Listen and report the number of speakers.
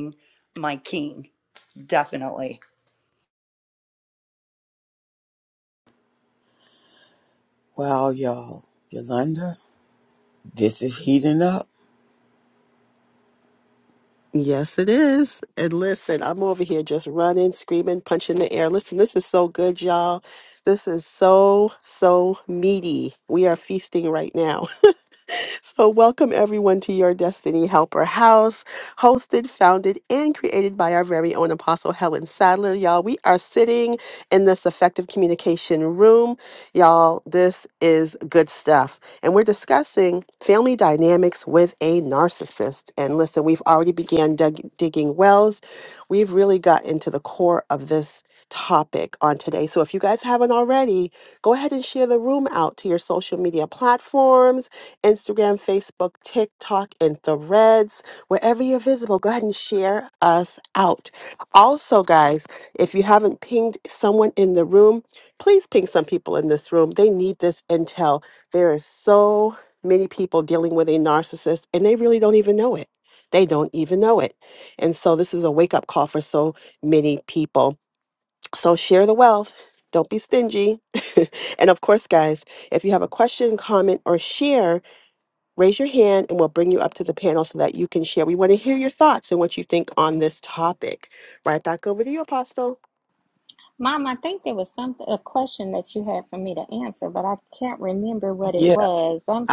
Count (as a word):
four